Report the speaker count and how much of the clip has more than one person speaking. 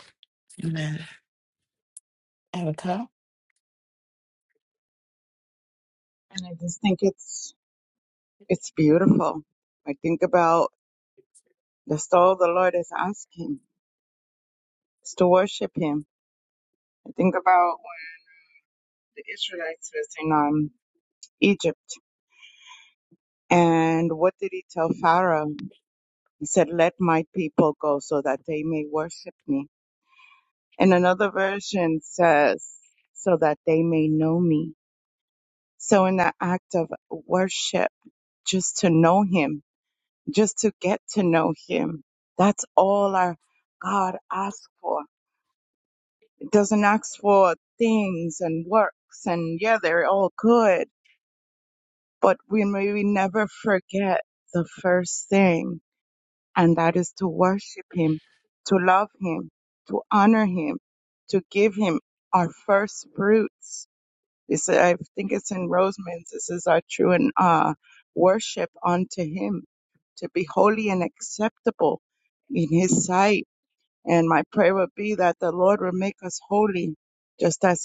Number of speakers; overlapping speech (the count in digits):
2, no overlap